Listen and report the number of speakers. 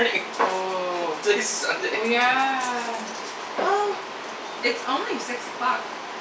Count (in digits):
3